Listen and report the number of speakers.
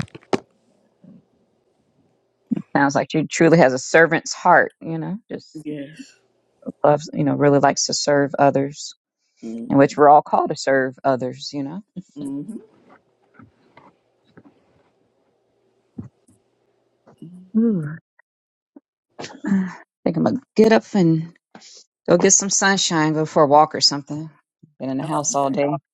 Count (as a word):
two